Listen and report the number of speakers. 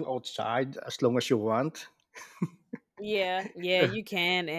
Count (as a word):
two